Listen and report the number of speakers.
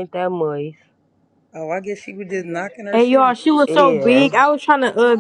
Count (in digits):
3